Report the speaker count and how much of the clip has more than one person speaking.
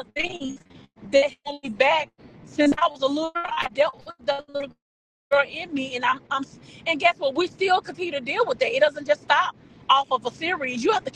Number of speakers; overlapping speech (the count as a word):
one, no overlap